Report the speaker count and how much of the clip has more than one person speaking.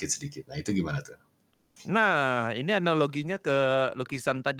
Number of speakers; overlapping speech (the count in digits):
2, no overlap